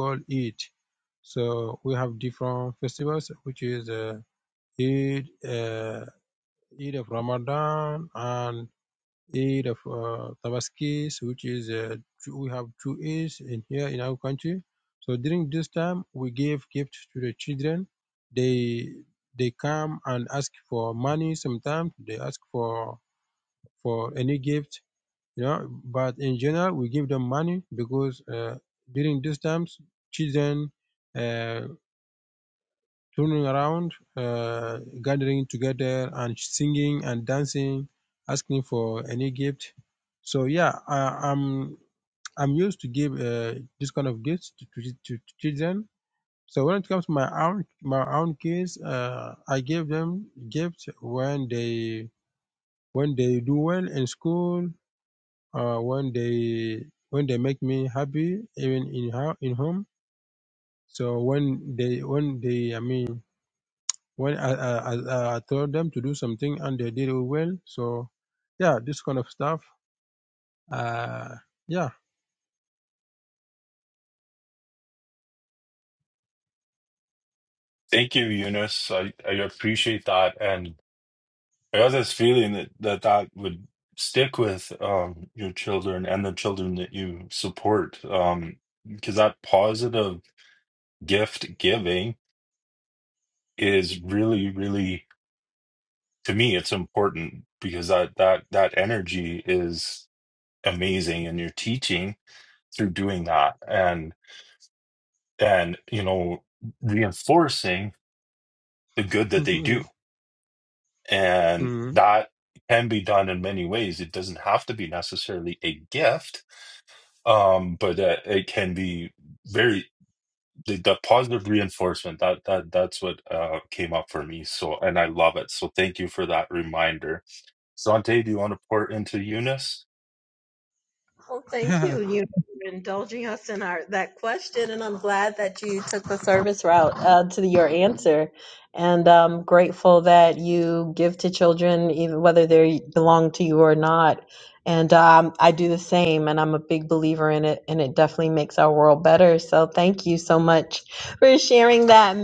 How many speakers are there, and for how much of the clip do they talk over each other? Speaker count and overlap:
3, under 1%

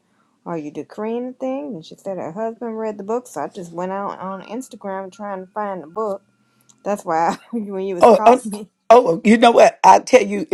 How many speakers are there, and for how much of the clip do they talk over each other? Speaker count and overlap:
2, about 4%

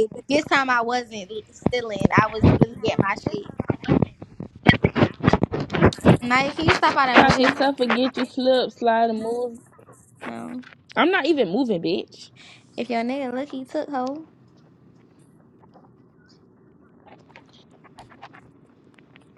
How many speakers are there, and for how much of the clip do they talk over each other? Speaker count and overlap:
2, about 2%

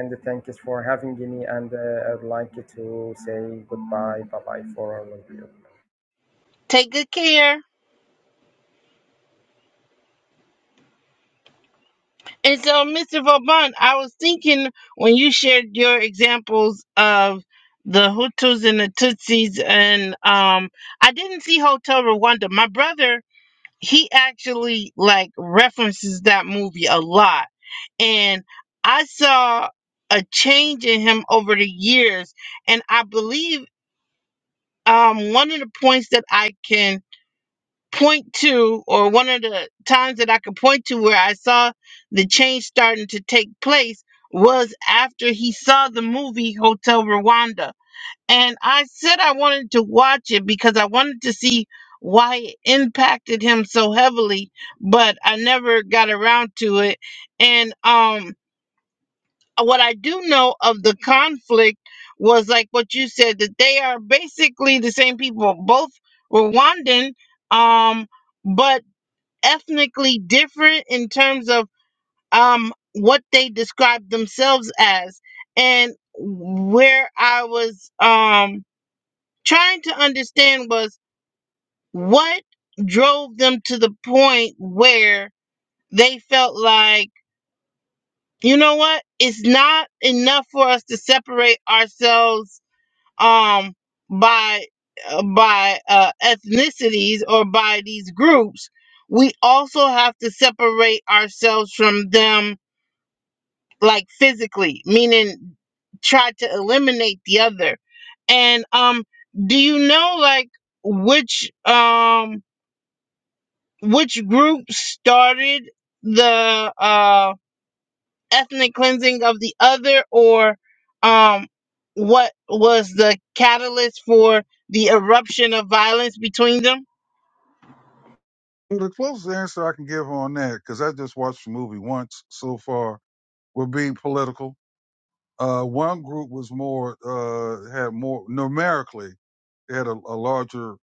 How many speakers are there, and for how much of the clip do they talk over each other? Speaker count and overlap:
3, no overlap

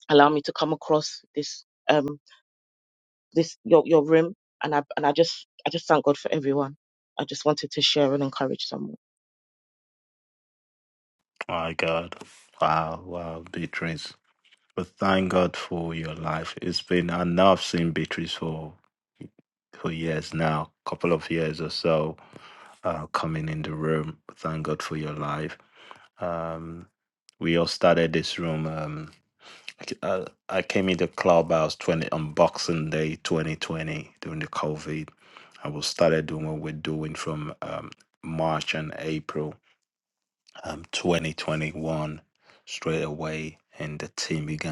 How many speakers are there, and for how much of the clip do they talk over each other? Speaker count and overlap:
2, no overlap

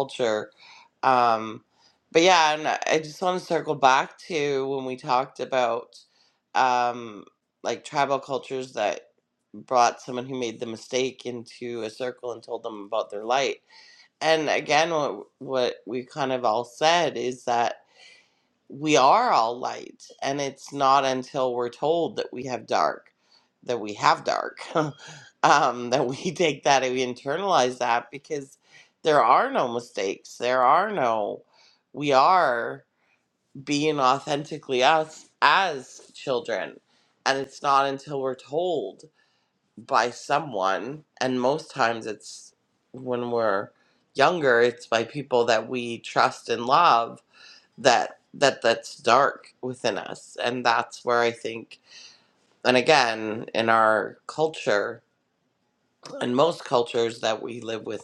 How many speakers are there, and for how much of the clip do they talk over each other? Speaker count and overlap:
1, no overlap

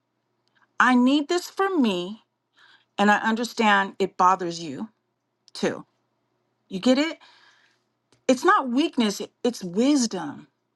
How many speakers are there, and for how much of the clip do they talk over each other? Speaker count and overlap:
1, no overlap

